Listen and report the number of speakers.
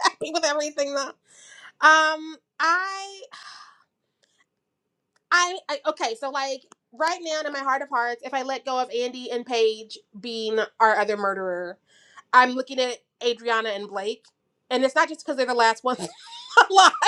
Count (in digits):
1